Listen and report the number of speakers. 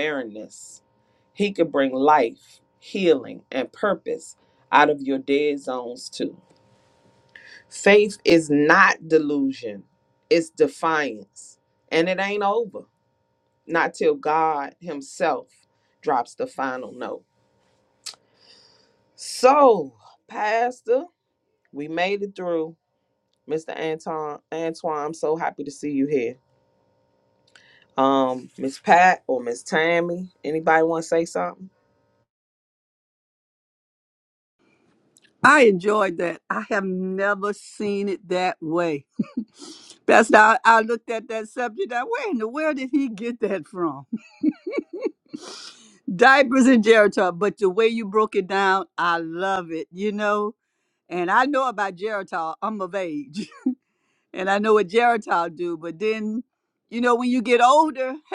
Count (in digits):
2